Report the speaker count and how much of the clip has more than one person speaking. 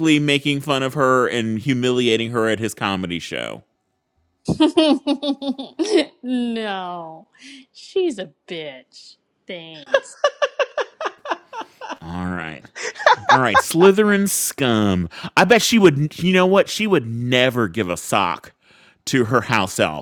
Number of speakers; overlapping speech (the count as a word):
two, no overlap